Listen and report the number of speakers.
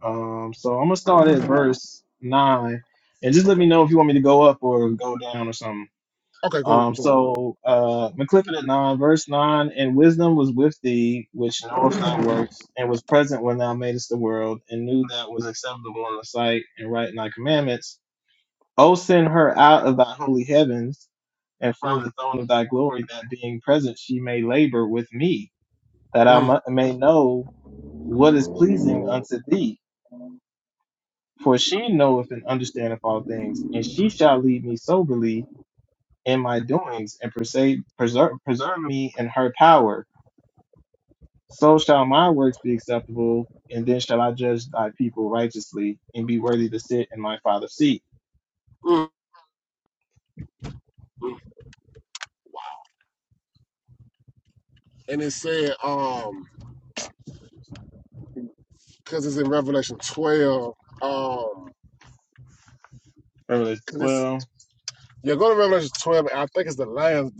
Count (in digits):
2